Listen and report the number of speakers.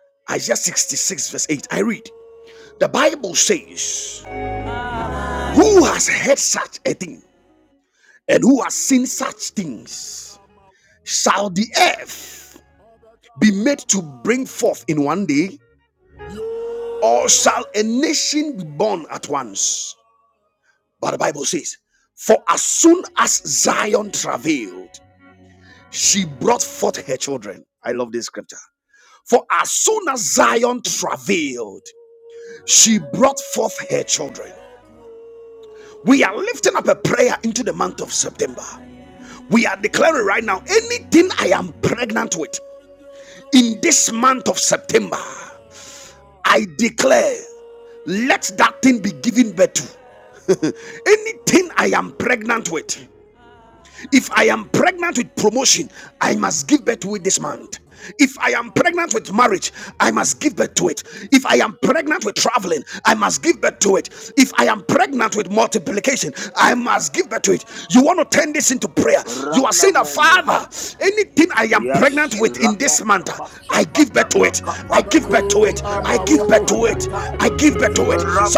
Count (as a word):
two